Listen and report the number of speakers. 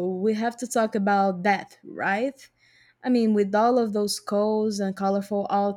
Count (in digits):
1